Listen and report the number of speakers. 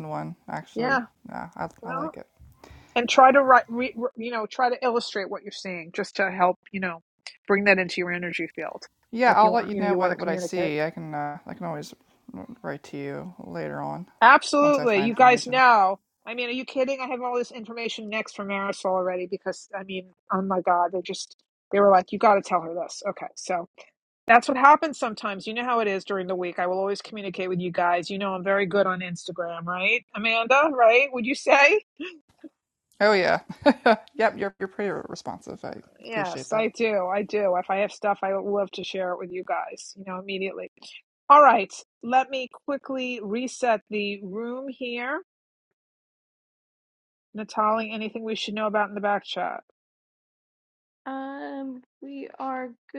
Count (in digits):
3